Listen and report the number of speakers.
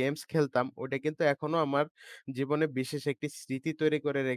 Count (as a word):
one